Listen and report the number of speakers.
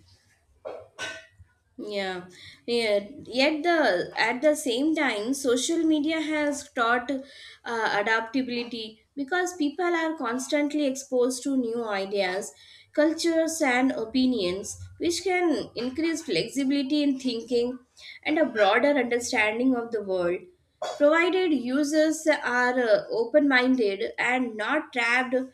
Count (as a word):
one